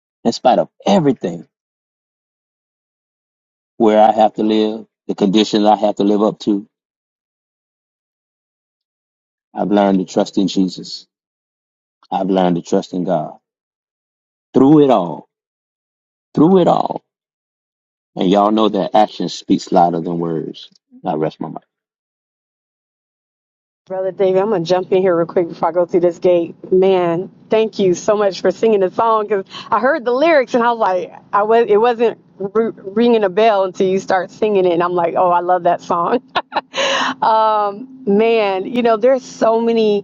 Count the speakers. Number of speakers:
2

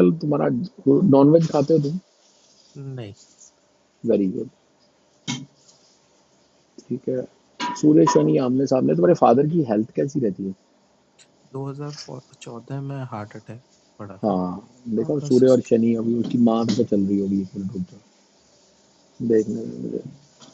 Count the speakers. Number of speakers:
2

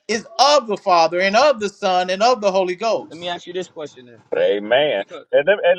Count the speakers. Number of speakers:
3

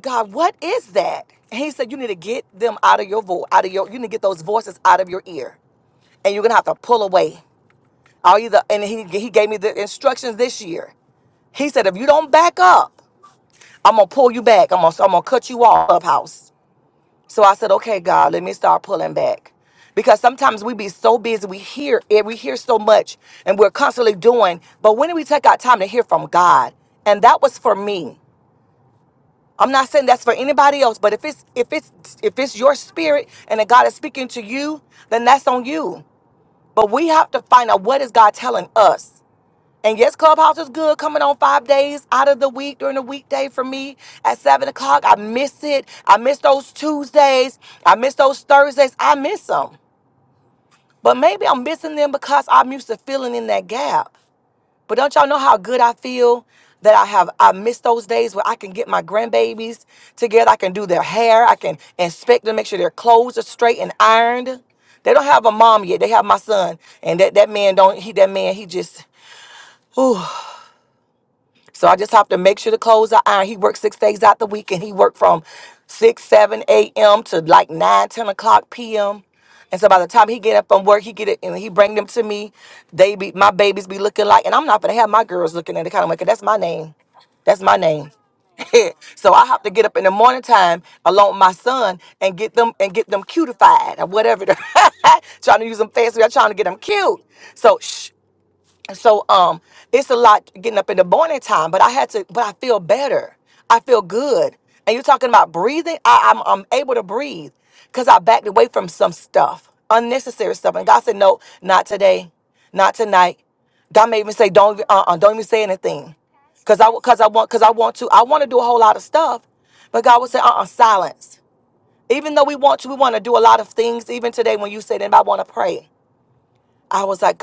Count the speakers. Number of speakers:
1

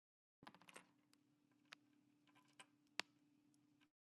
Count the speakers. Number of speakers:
0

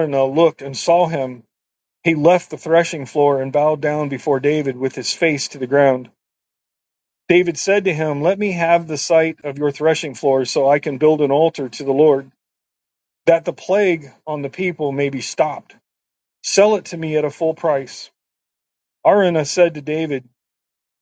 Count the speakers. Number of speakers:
1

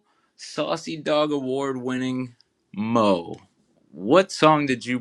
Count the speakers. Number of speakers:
1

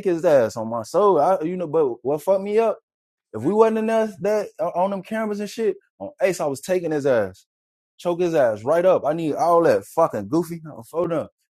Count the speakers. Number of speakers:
1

